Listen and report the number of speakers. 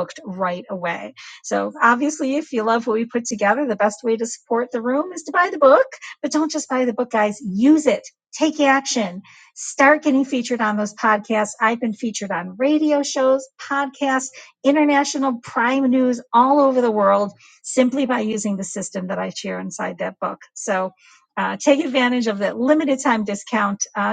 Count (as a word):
one